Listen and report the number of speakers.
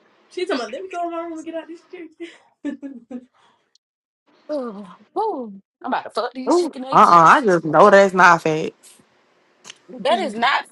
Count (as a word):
three